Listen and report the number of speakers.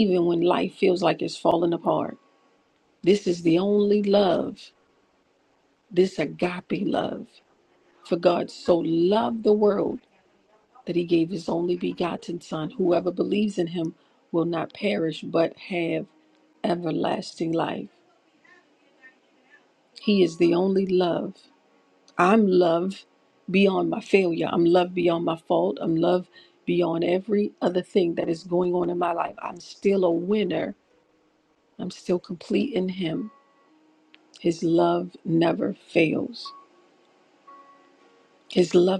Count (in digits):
1